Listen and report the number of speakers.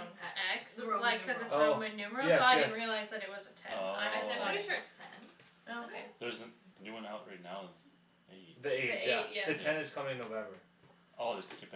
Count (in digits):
4